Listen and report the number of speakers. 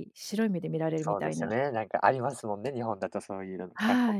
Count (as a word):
two